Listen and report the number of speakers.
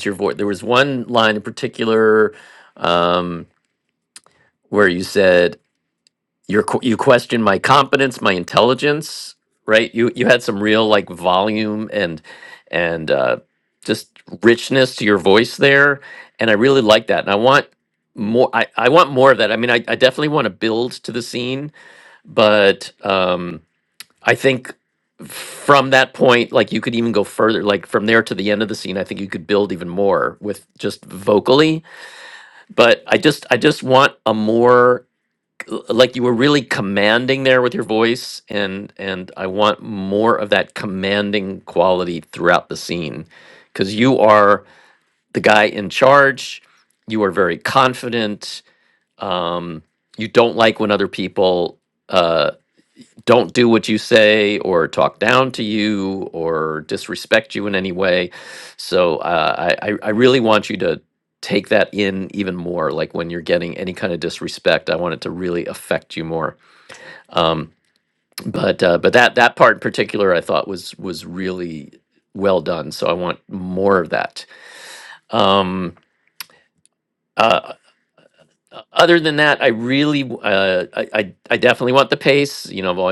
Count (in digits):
1